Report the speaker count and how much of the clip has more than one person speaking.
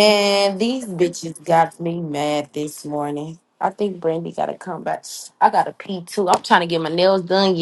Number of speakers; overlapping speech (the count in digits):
1, no overlap